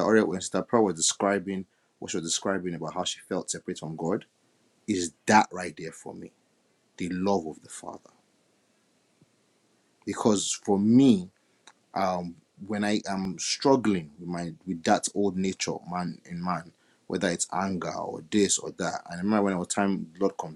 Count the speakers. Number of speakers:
one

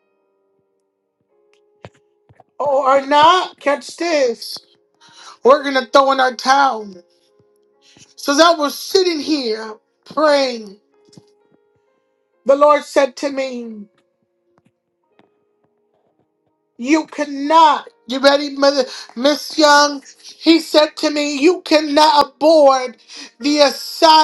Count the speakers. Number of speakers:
one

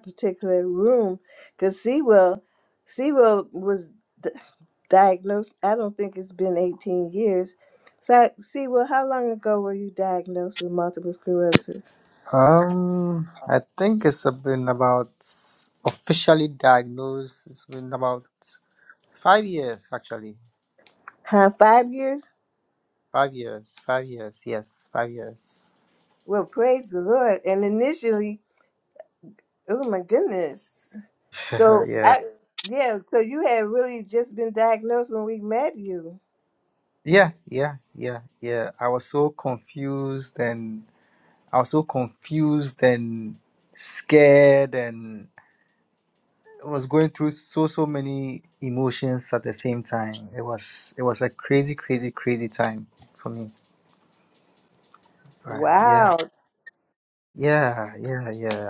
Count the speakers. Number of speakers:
two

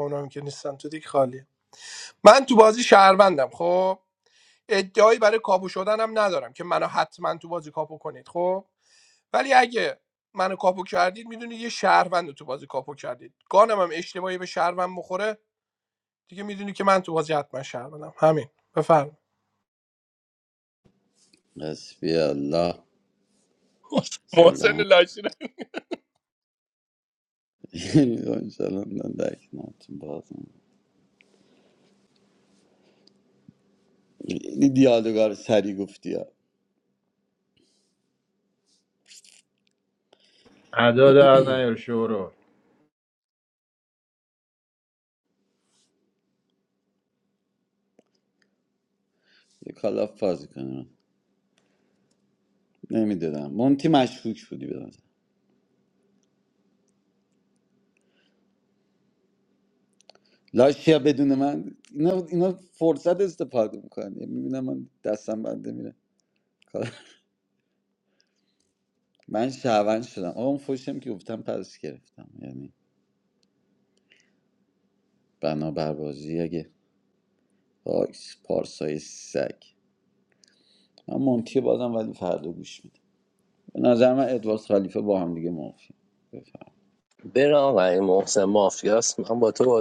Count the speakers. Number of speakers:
four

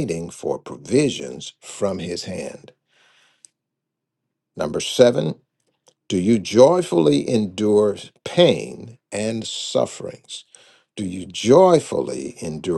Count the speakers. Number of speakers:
one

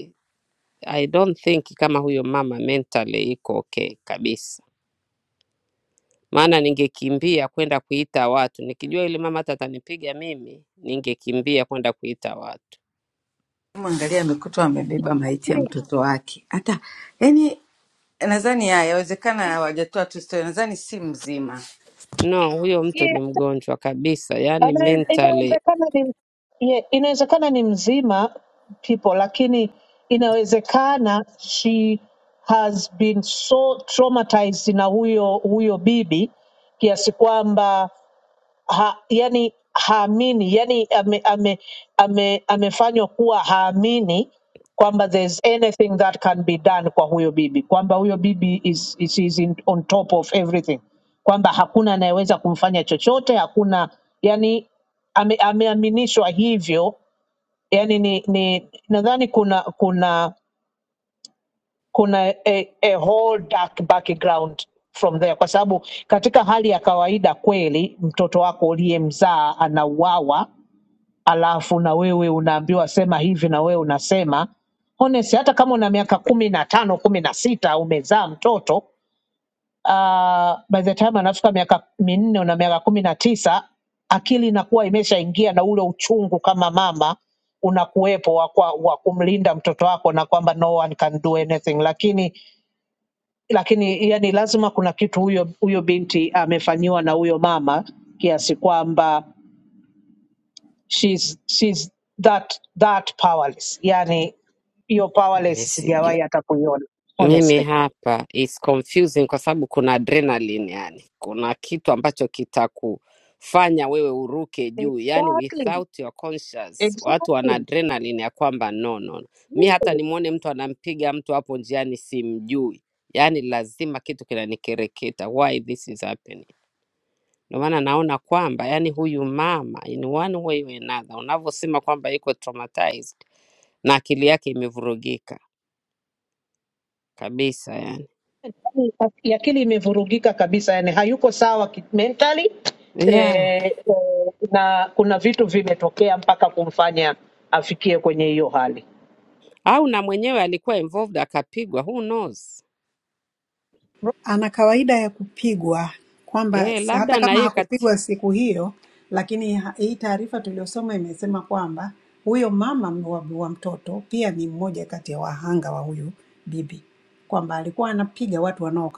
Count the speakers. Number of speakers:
four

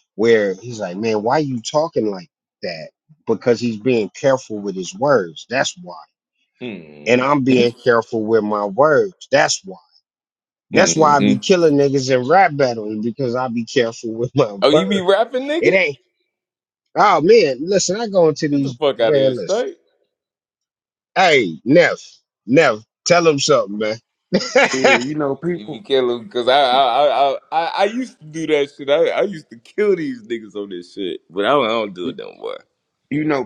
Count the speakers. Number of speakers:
three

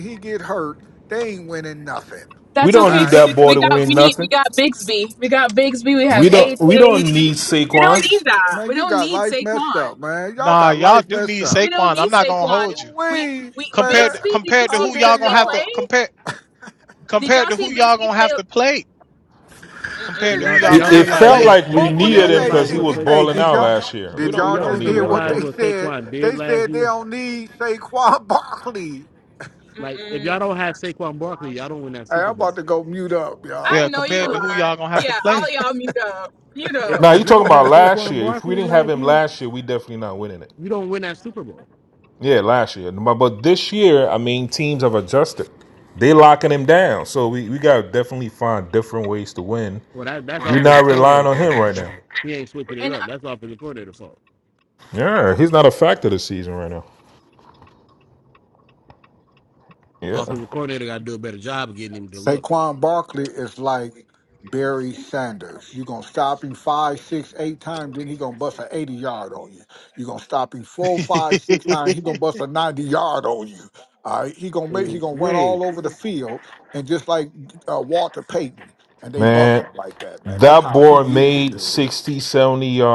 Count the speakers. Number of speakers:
five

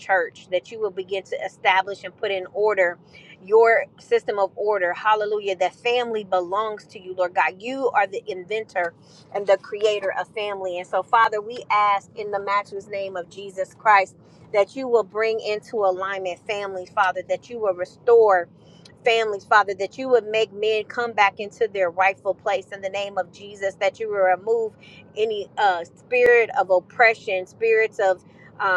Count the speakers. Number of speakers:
one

